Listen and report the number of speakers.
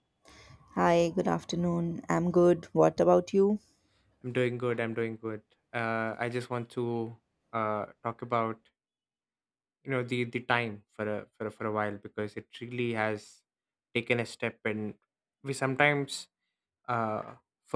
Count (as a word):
two